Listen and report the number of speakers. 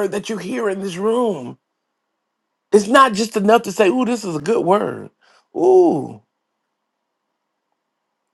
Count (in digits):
1